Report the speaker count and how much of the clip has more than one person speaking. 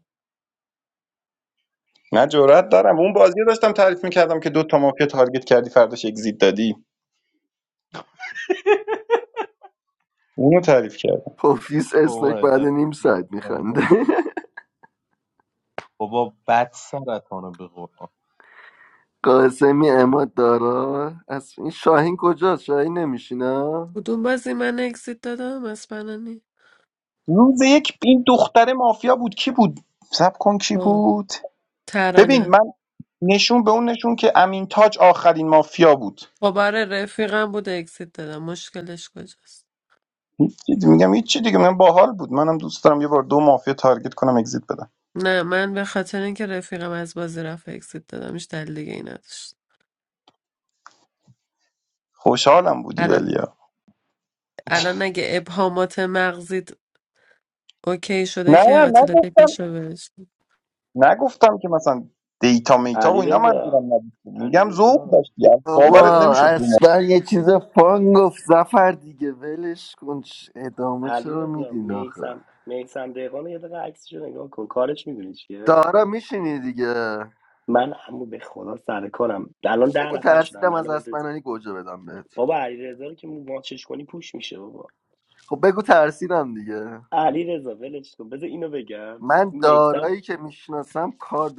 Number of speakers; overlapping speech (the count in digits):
5, about 11%